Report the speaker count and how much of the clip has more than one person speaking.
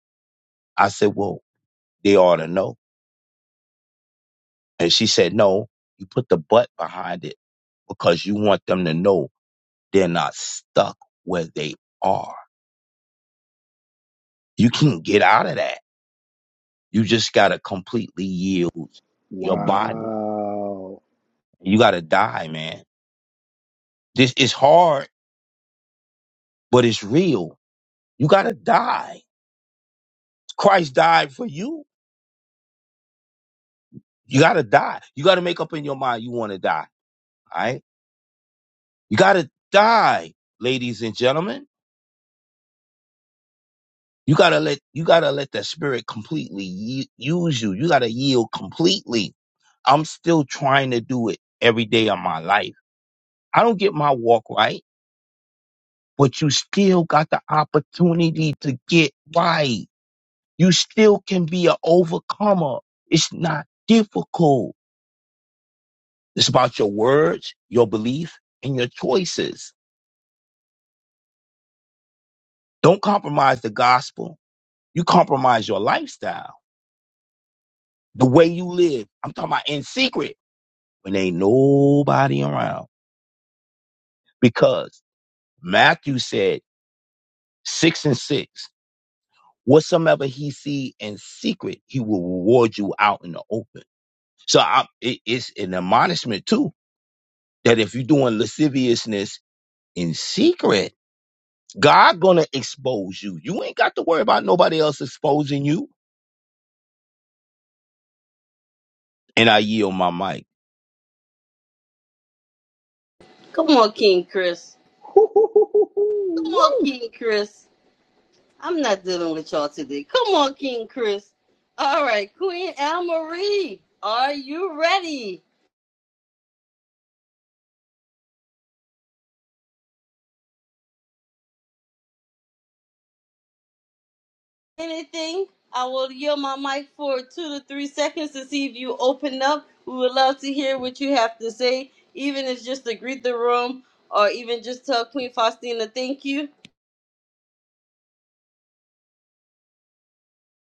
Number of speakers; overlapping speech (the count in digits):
3, about 1%